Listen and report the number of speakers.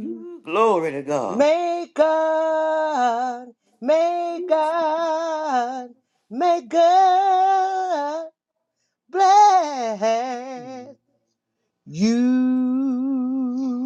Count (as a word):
two